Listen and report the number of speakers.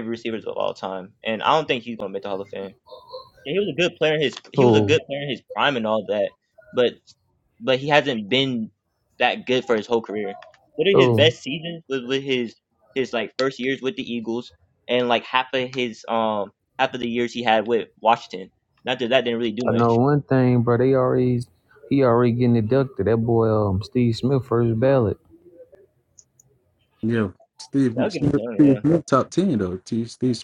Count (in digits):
3